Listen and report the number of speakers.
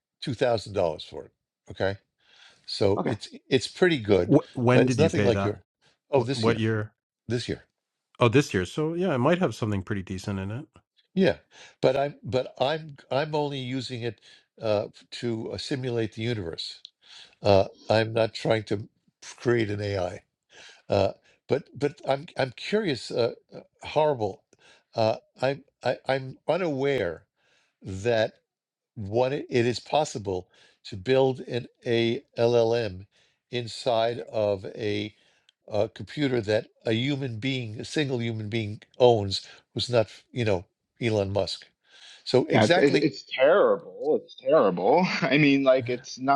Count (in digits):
3